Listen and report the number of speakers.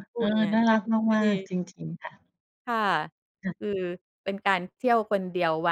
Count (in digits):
2